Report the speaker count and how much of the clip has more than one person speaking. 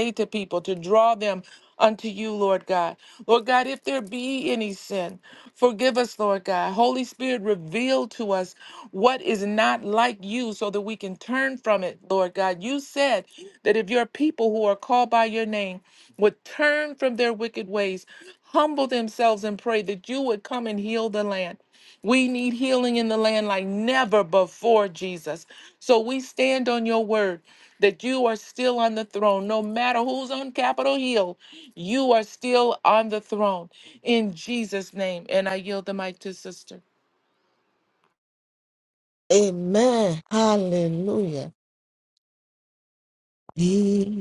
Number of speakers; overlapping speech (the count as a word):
two, no overlap